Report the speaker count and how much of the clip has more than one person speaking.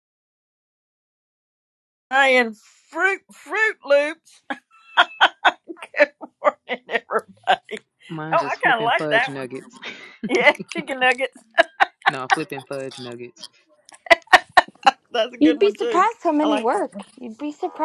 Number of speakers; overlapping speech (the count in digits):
3, about 13%